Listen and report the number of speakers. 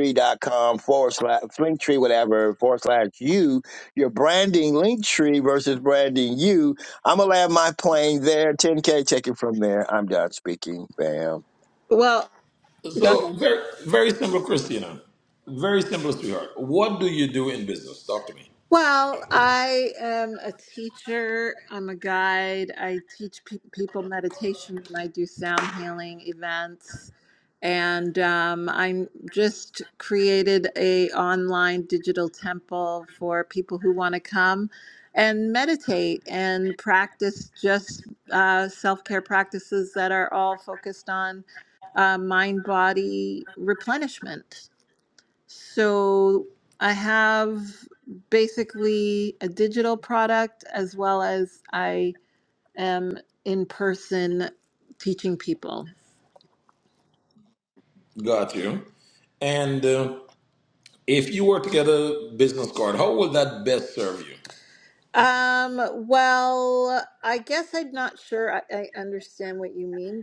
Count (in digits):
3